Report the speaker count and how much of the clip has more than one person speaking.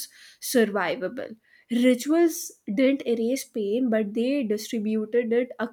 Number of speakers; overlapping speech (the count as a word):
one, no overlap